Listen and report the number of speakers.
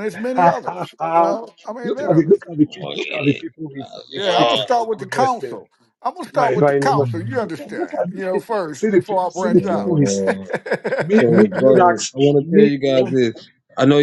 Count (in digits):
3